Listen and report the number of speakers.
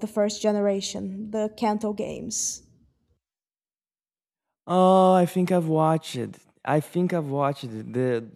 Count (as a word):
two